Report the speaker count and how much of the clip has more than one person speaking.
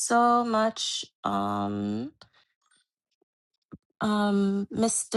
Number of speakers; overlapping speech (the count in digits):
1, no overlap